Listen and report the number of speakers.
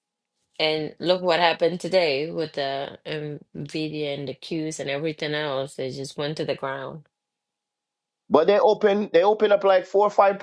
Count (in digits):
2